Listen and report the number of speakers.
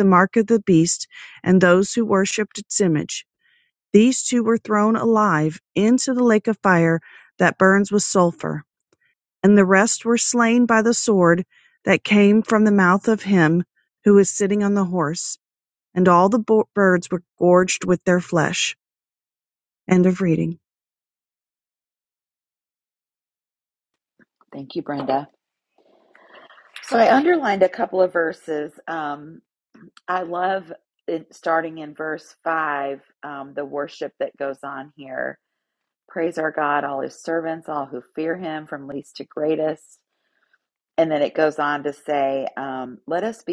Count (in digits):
2